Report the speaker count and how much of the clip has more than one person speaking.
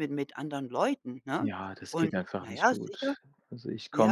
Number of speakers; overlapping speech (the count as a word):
two, about 38%